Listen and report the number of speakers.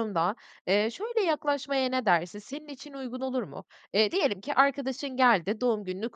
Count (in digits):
1